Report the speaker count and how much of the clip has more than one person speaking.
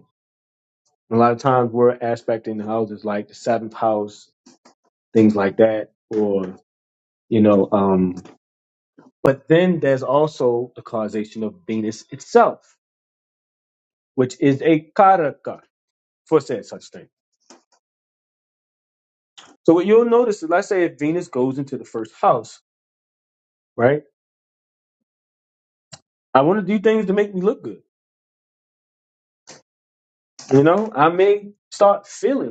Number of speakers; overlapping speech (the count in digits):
1, no overlap